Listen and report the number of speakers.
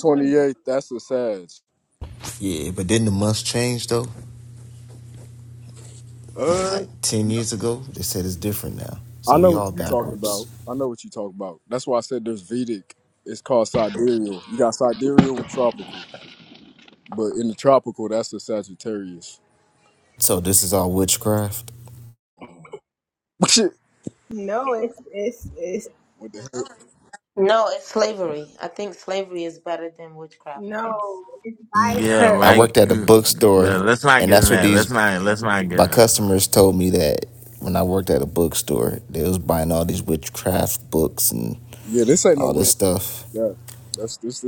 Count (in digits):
5